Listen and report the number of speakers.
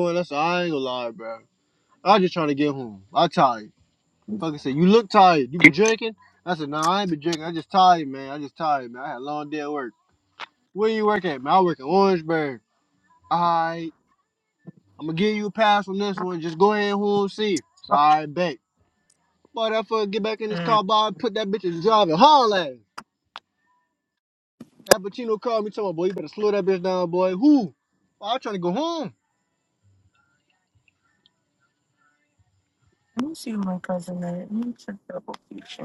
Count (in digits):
2